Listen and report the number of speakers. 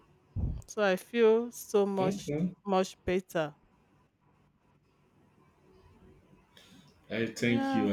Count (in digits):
2